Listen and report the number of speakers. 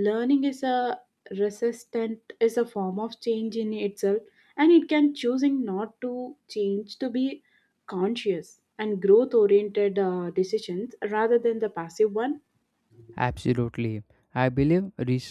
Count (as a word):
two